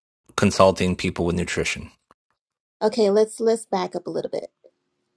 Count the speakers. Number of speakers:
2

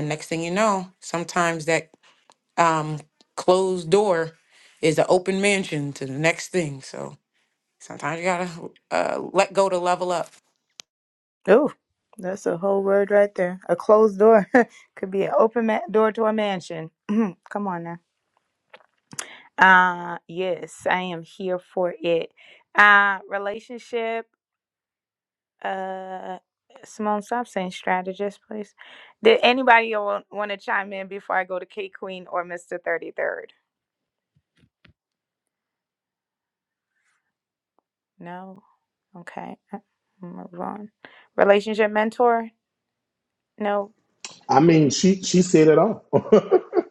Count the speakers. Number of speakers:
3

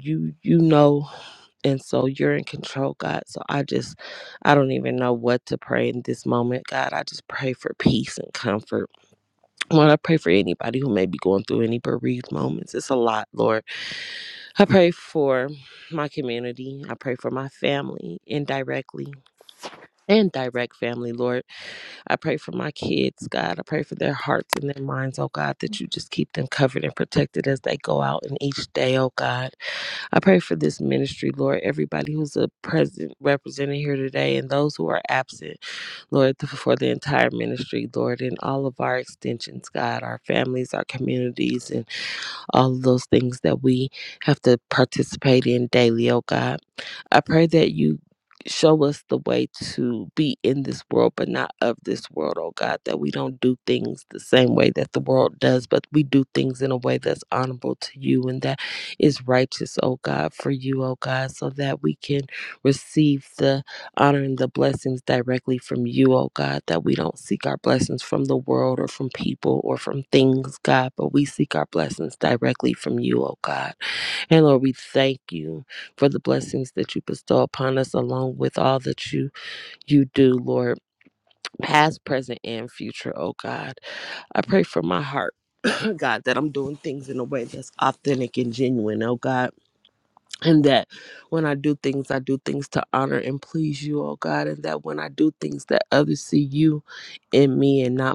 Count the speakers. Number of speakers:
1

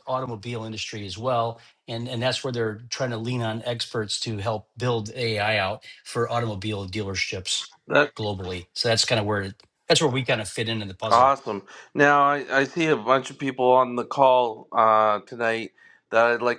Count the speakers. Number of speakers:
2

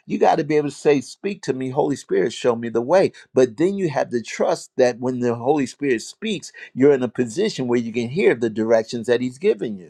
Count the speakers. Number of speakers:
1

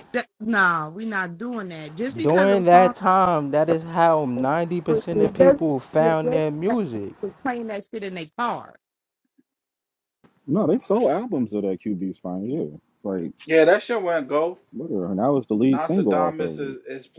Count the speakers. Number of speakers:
4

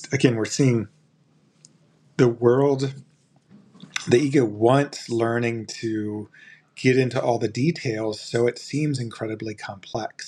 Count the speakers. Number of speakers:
1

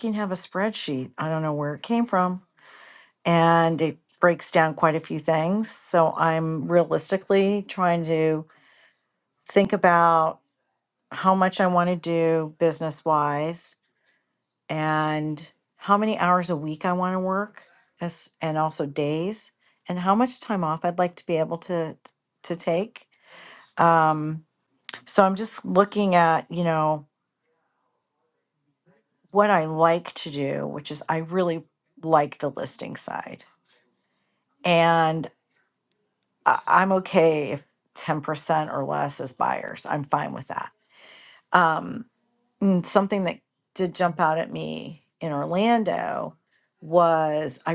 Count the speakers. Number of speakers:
1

